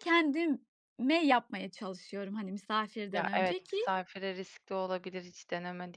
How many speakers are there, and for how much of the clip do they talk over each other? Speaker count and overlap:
2, about 11%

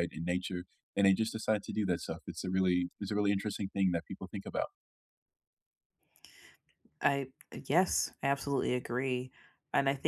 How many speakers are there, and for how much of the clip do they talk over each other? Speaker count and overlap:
2, no overlap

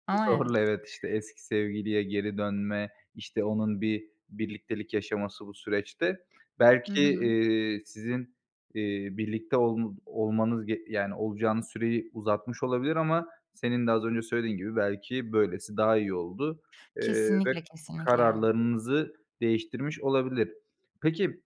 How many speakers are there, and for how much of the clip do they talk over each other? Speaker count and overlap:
2, about 8%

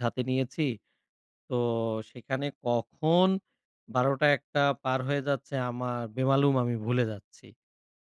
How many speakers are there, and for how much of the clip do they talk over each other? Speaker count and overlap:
1, no overlap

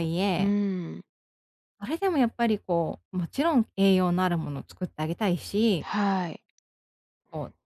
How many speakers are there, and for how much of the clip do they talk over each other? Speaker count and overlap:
2, about 2%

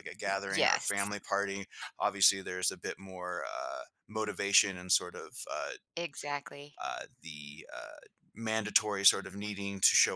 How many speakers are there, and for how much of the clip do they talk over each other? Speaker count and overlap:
2, about 8%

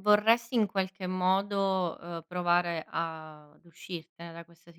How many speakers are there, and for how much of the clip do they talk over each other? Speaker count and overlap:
1, no overlap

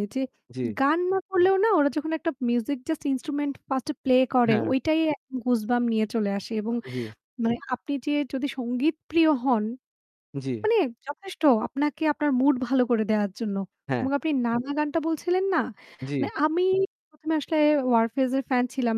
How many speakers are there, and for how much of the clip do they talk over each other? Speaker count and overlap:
2, about 2%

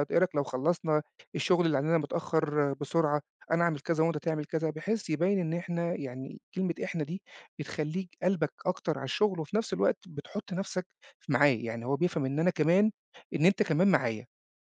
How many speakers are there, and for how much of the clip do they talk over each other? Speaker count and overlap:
1, no overlap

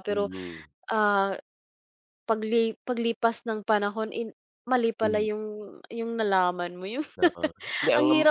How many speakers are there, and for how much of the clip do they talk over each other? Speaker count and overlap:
2, about 10%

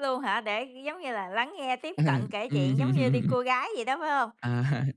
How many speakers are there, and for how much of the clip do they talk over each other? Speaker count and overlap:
2, about 17%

